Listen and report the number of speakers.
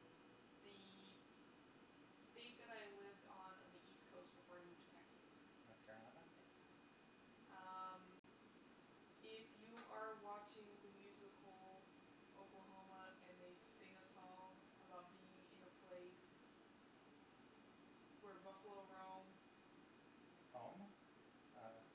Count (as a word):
two